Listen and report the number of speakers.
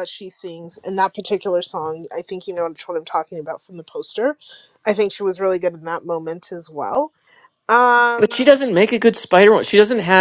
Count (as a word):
two